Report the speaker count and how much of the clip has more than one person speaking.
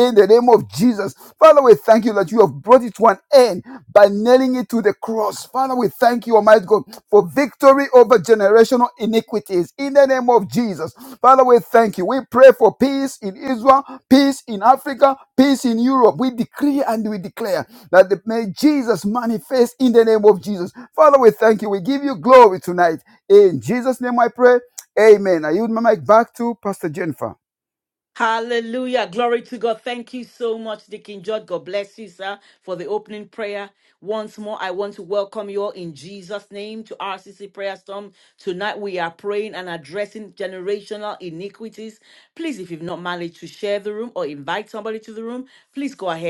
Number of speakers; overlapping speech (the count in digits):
2, no overlap